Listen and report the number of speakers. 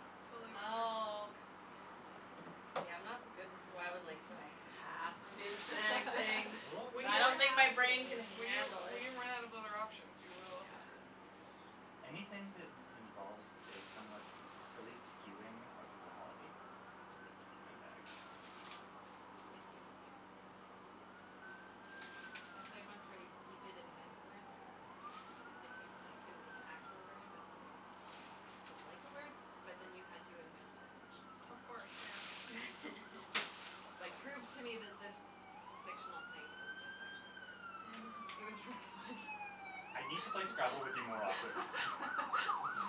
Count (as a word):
four